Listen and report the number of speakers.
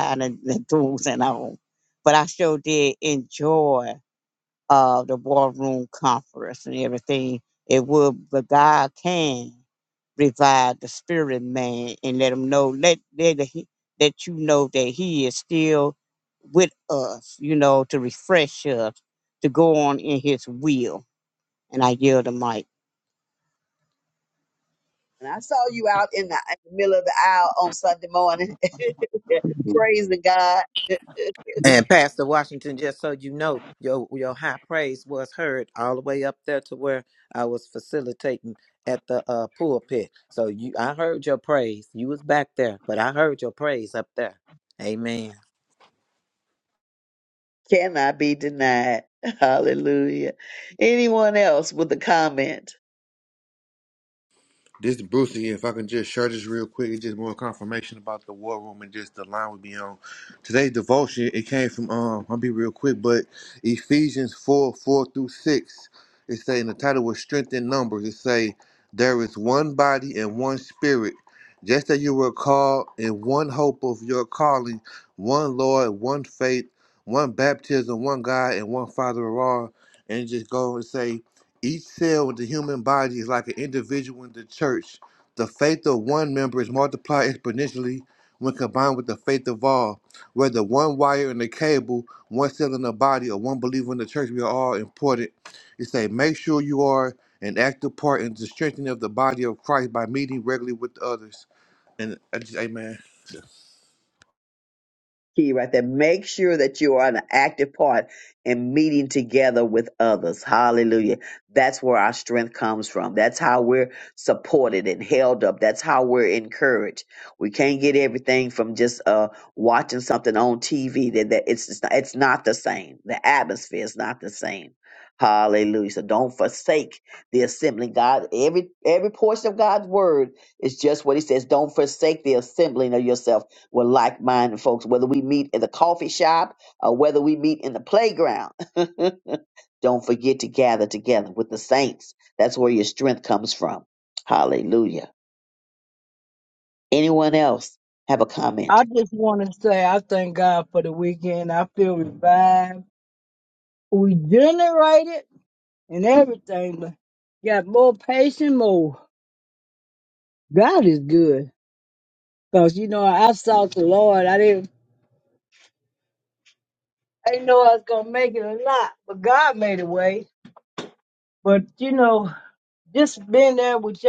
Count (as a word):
five